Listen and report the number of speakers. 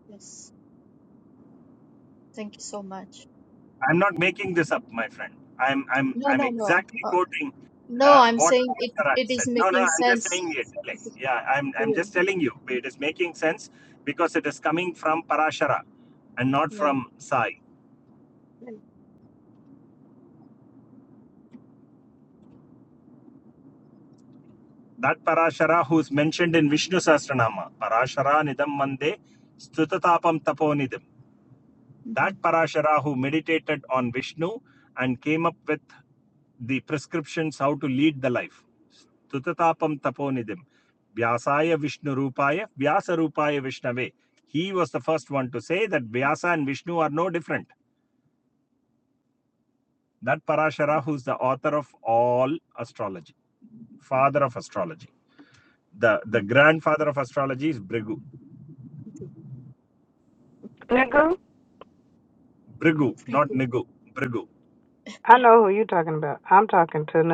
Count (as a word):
three